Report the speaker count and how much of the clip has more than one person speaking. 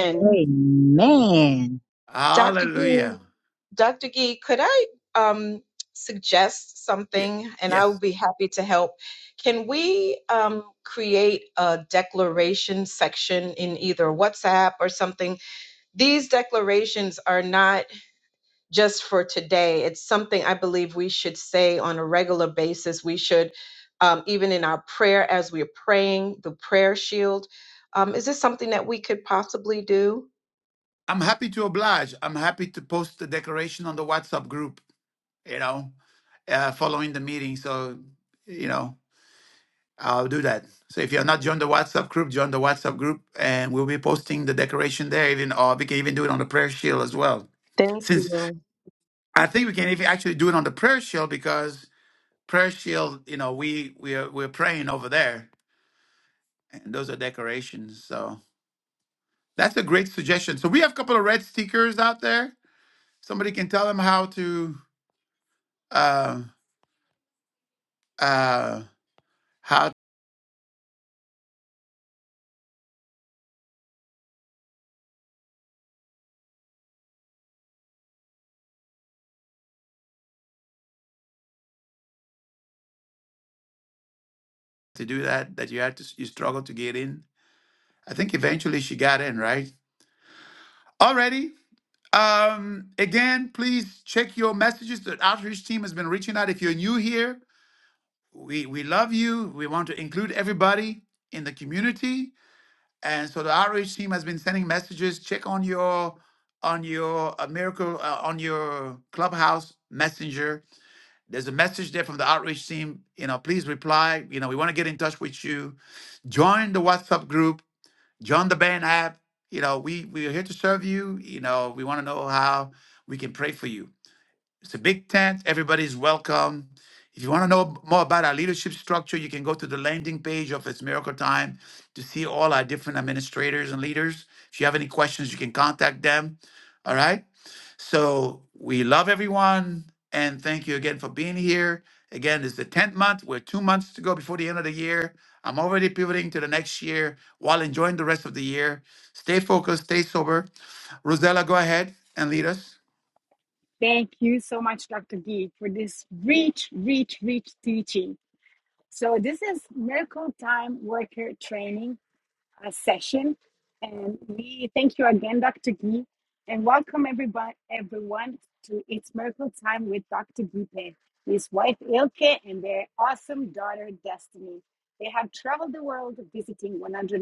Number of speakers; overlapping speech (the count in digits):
4, about 1%